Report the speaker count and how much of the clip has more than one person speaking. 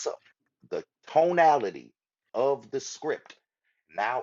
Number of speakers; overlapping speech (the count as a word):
one, no overlap